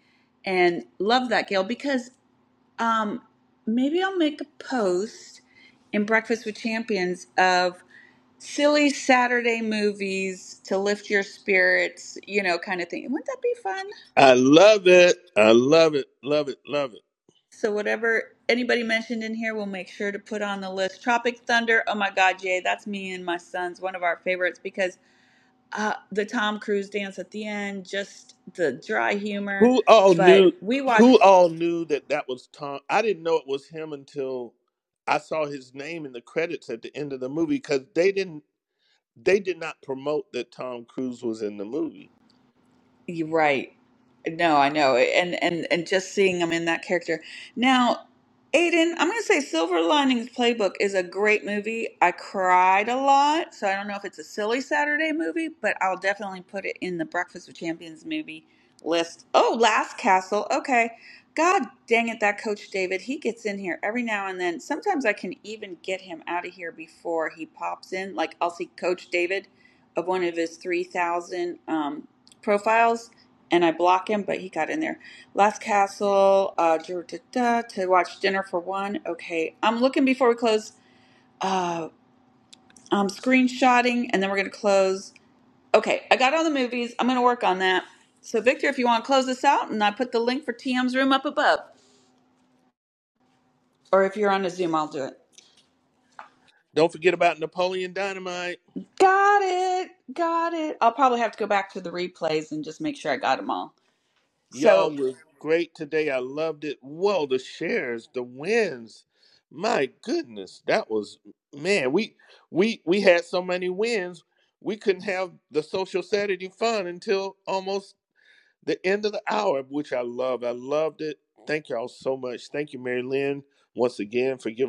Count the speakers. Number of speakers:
2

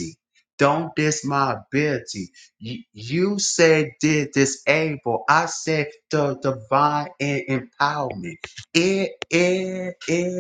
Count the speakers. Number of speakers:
1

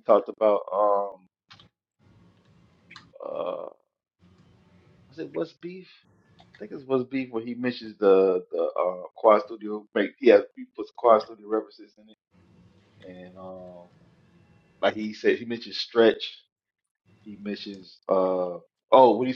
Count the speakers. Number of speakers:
1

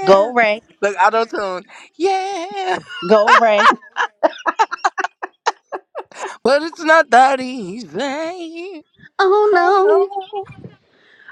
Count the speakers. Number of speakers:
2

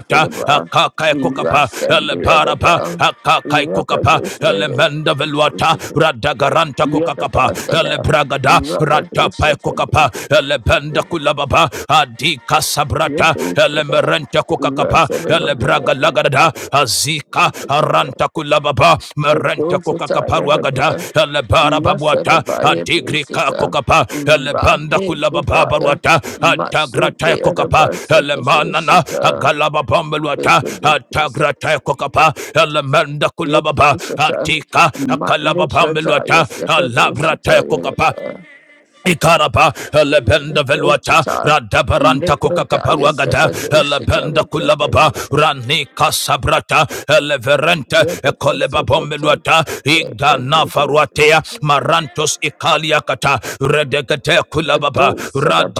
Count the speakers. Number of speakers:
2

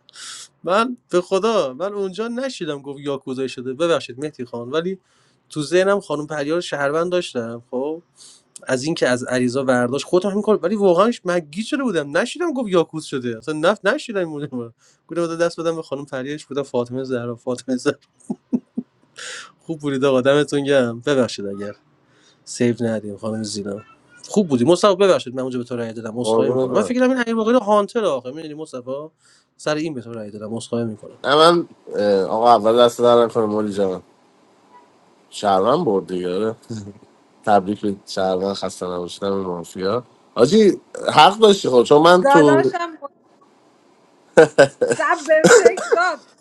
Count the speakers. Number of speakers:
3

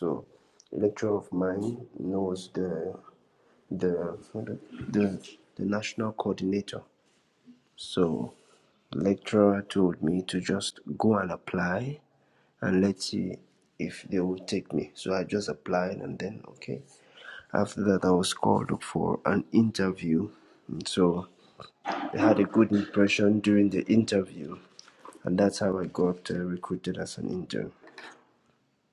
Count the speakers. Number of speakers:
1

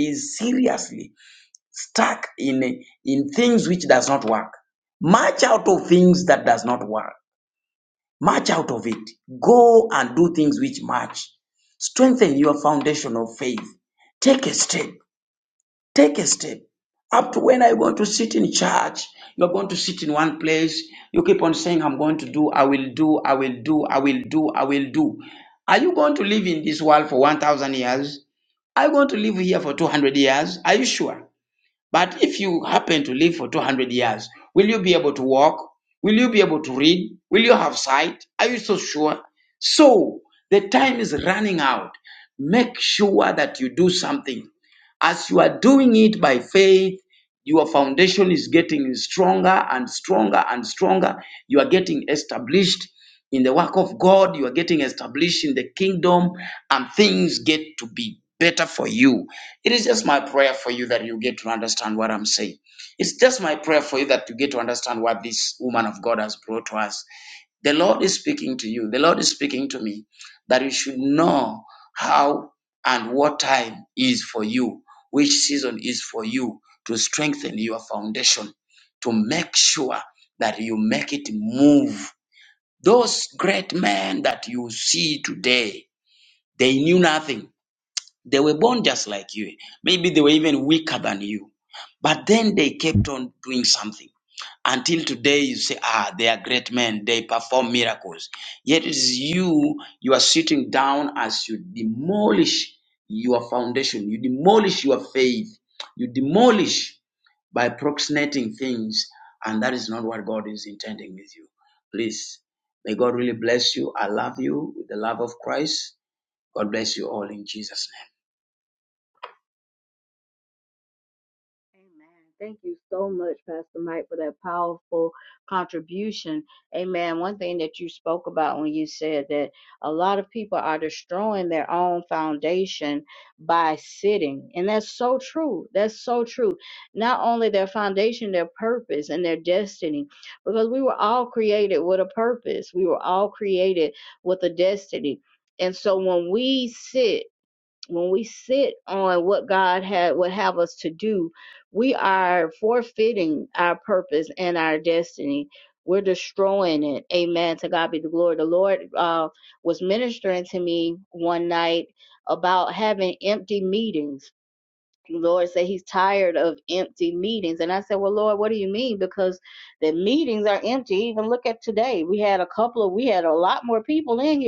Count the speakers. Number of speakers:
2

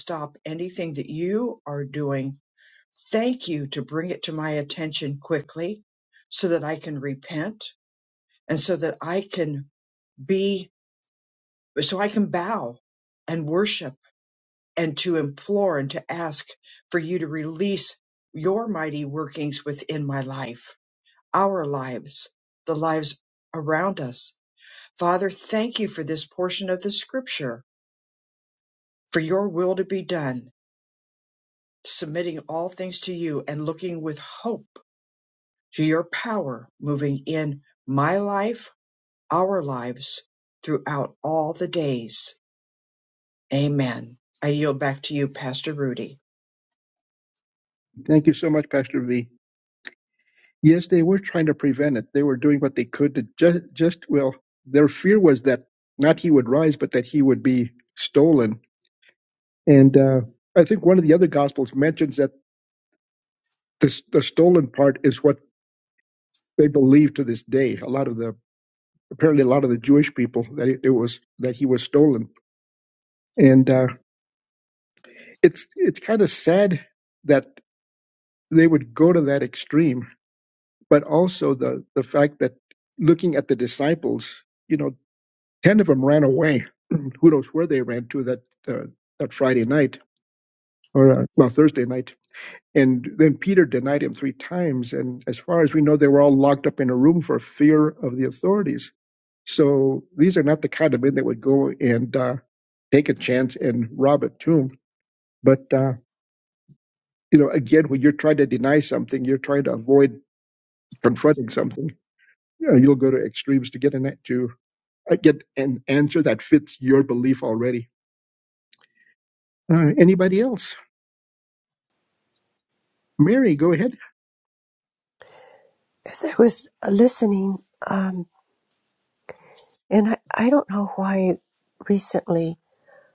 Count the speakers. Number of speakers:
3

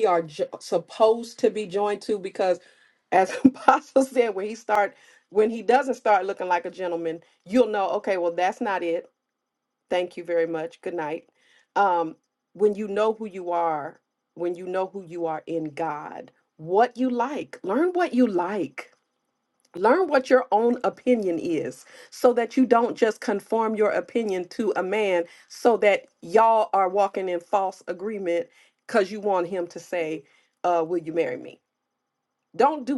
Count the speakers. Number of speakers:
1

